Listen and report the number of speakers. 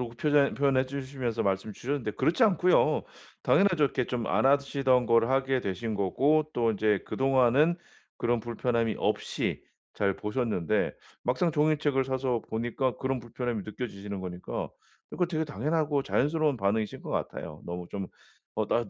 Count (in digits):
1